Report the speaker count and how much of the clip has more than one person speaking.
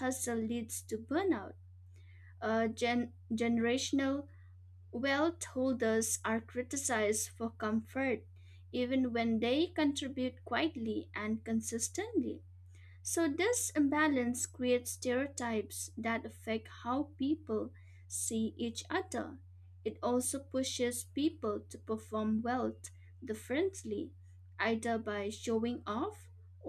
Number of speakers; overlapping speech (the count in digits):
1, no overlap